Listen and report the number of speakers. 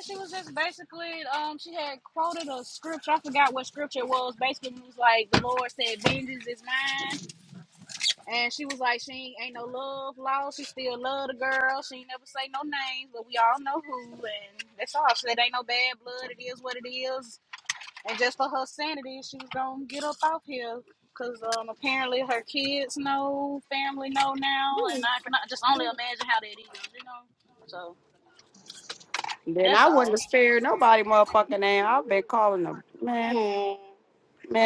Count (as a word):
two